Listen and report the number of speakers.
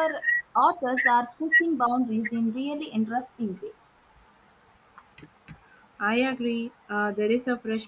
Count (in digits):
2